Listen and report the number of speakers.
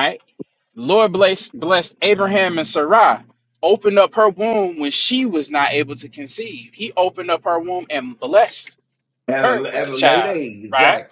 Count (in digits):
2